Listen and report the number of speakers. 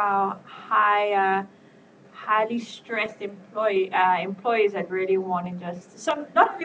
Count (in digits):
1